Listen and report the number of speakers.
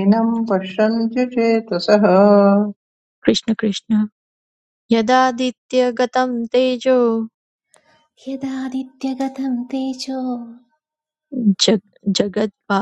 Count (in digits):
3